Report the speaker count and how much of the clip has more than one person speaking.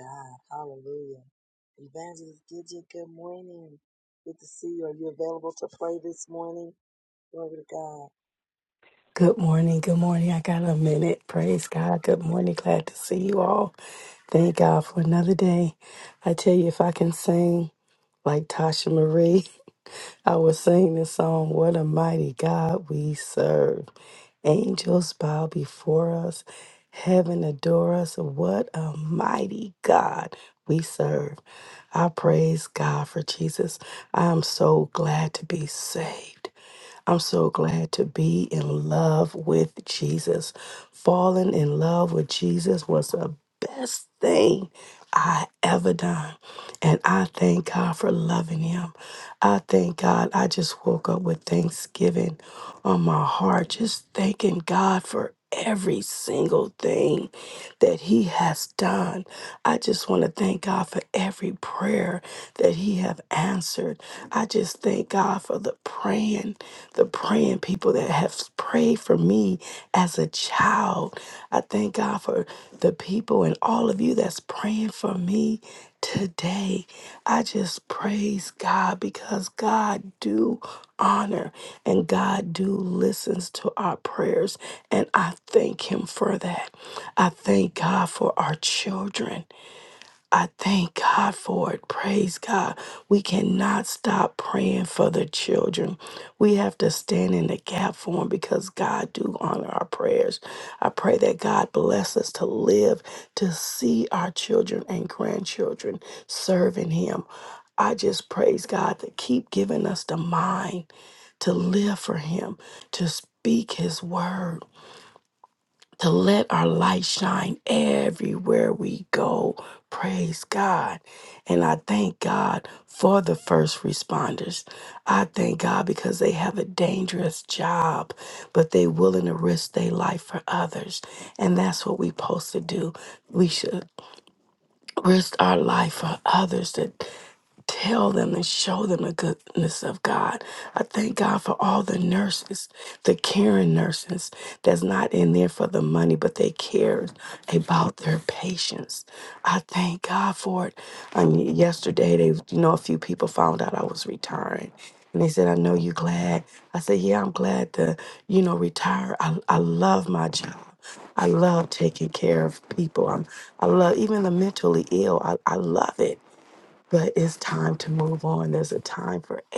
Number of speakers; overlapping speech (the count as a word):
two, no overlap